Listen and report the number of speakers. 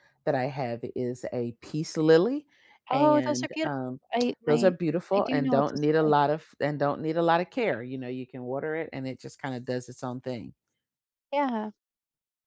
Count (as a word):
two